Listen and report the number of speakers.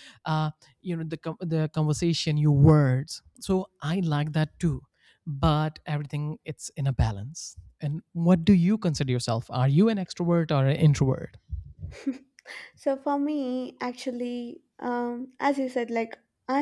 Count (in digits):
2